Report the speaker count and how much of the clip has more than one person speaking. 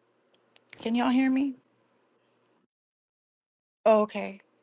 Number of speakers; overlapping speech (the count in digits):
1, no overlap